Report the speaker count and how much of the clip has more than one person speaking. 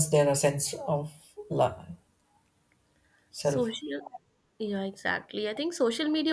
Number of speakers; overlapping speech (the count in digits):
2, about 2%